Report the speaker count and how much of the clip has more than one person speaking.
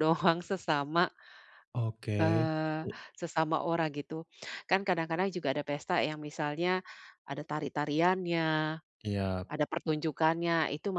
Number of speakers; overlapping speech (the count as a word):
two, about 3%